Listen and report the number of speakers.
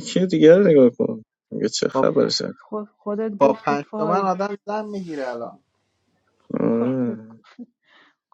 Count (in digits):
3